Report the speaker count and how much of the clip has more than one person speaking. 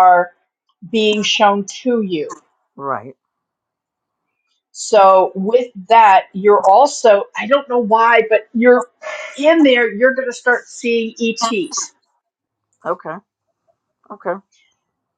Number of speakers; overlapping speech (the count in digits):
2, about 1%